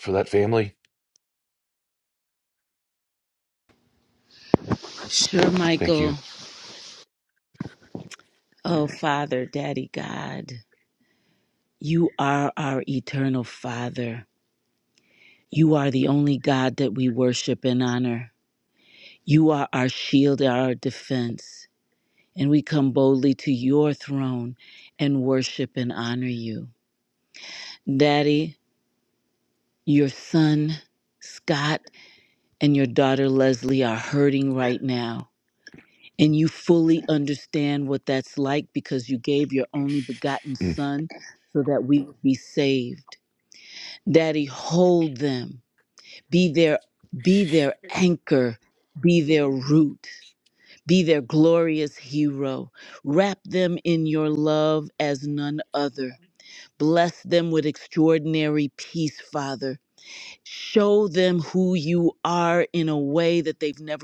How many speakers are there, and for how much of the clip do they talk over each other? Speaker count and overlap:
2, about 1%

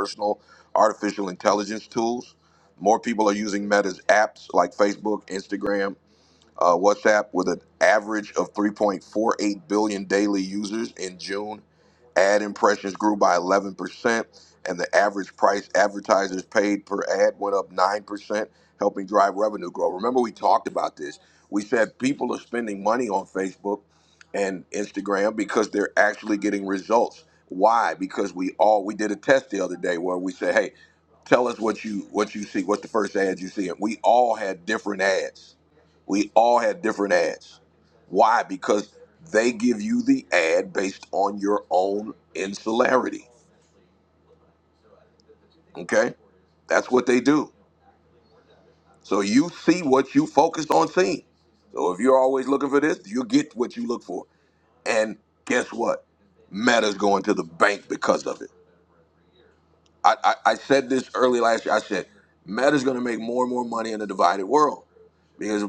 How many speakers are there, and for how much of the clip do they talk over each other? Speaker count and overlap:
1, no overlap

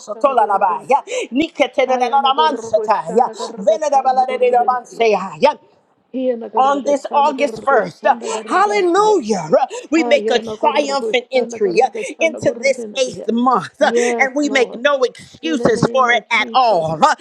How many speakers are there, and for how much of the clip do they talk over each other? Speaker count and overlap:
2, about 56%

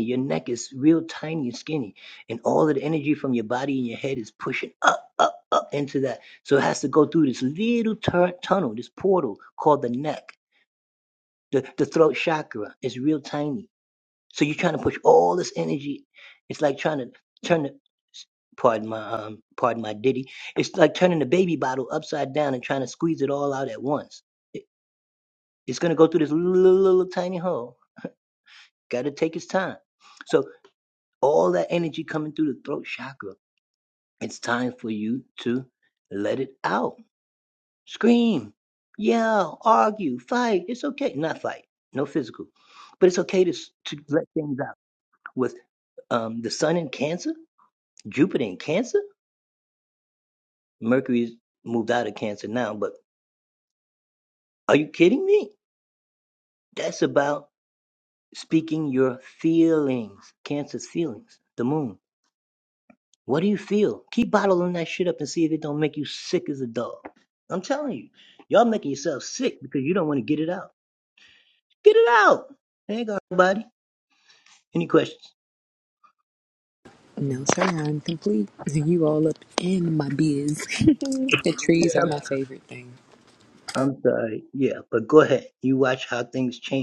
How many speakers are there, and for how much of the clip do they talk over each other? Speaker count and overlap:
2, under 1%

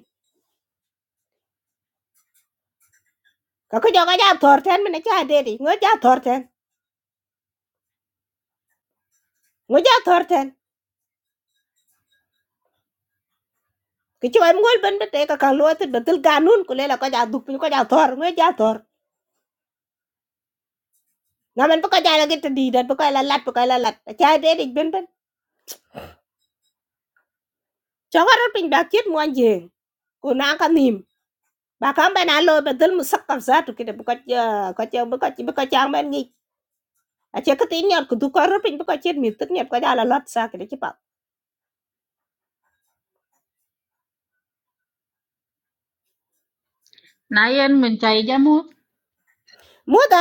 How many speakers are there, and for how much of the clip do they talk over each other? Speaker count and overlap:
2, no overlap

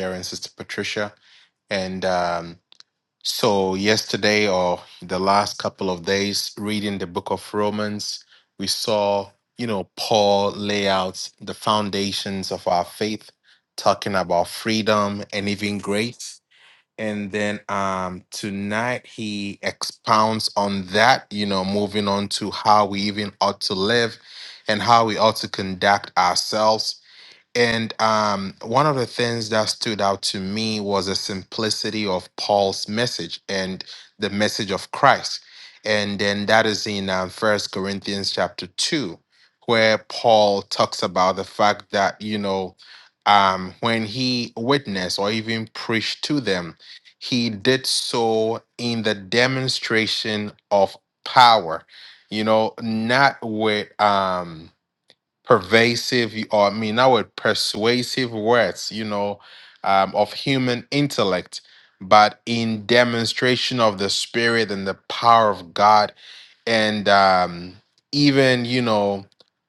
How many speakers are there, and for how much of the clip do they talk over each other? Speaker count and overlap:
1, no overlap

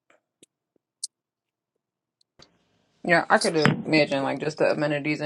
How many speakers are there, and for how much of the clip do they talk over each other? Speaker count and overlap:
1, no overlap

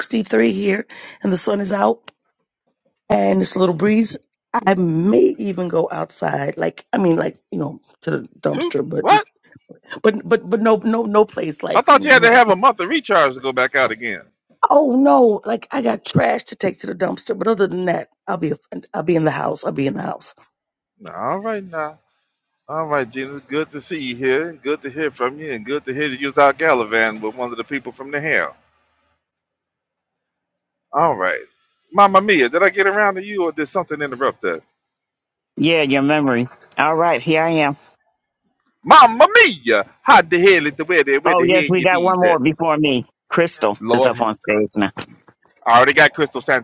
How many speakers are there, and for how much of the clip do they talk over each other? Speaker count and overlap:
3, about 5%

